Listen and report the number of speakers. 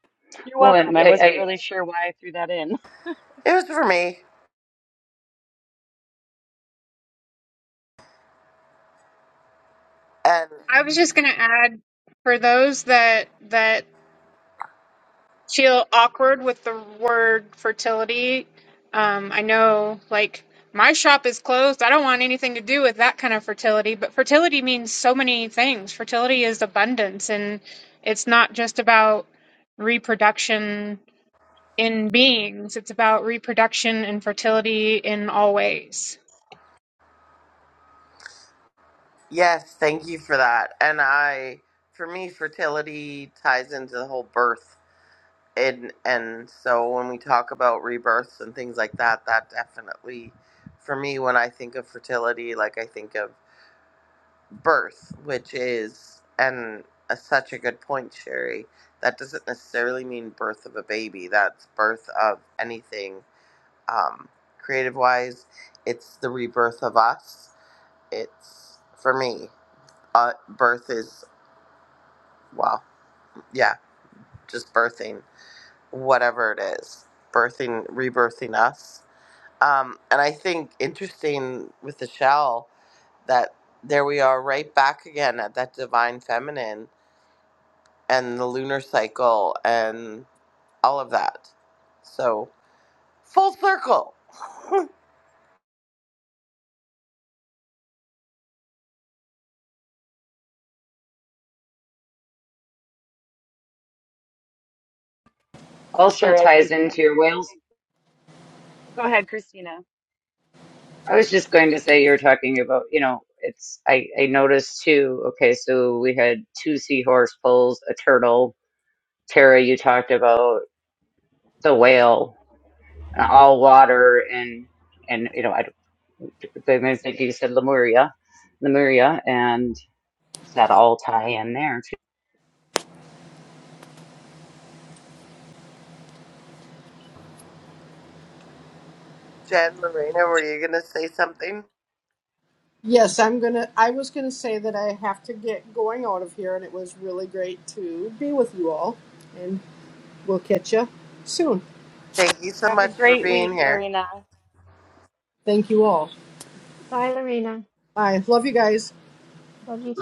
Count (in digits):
6